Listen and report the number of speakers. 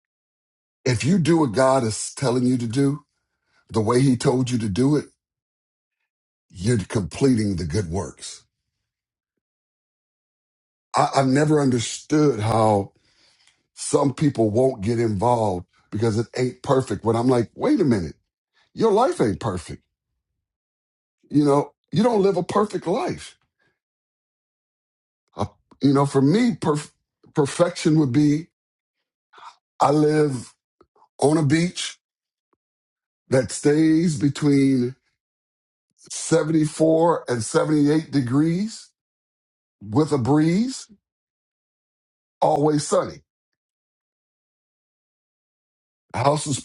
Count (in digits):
1